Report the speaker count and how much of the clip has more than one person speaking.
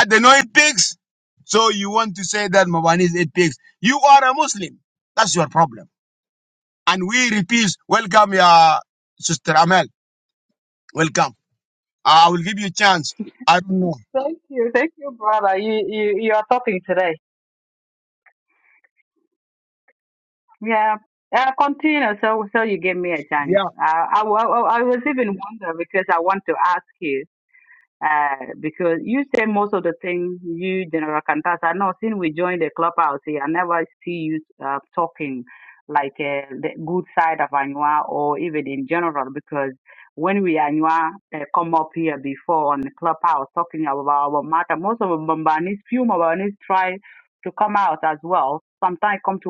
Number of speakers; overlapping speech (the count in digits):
2, under 1%